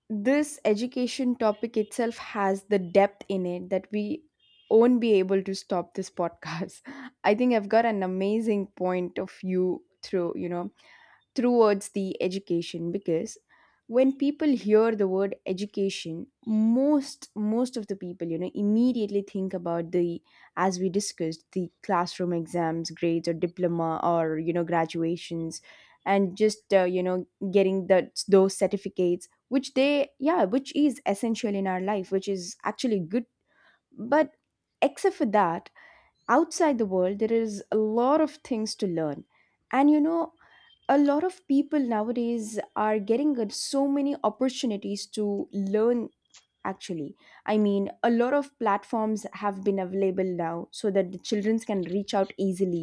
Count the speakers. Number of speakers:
1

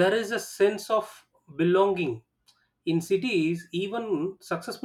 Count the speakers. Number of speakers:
1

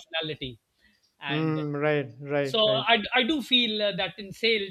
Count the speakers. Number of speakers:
2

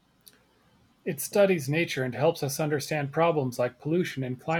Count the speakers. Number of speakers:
1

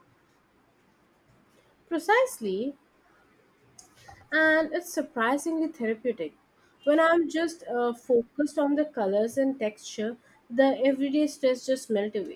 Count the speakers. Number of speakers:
1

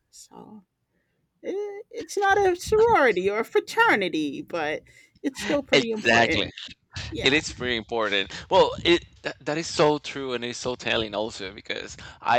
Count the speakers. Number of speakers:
2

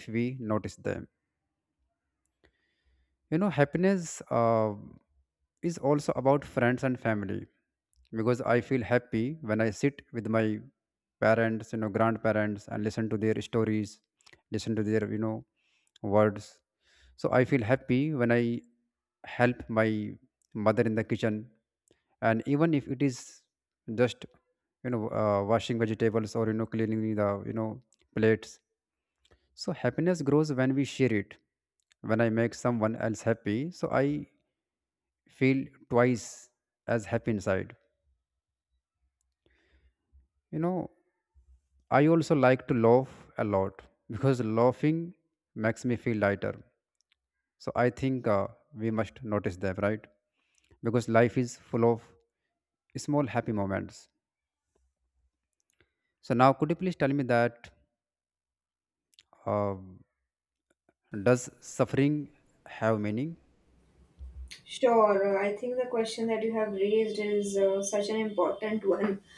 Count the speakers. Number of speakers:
2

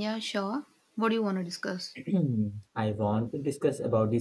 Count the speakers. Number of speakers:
2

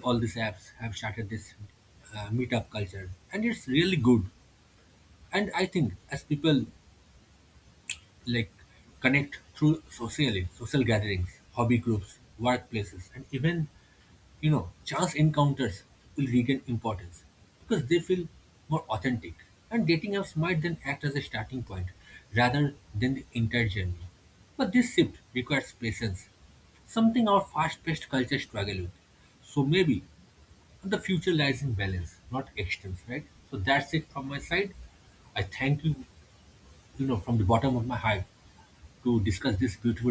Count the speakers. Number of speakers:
1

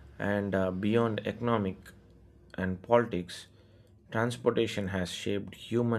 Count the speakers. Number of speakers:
1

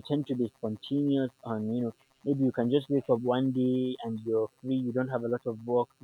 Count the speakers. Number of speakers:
1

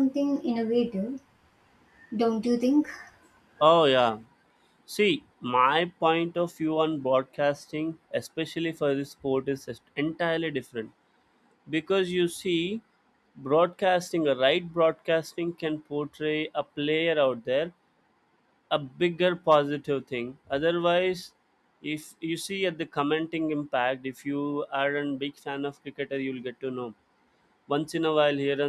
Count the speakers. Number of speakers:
2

